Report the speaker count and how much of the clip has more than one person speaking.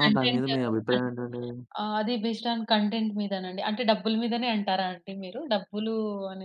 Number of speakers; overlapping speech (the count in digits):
2, about 11%